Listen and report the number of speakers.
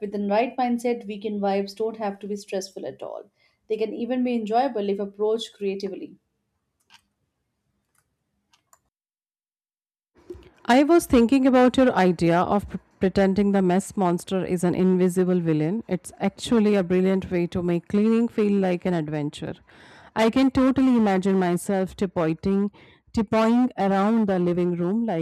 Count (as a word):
two